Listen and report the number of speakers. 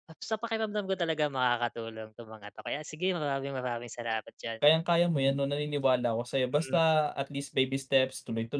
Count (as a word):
two